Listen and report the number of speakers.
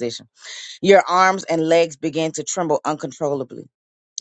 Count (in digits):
1